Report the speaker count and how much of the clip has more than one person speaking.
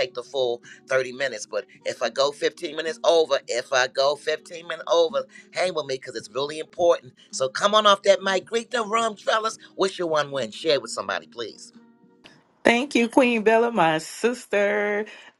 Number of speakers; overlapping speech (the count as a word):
two, no overlap